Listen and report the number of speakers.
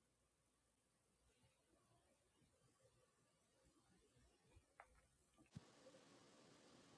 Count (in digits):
0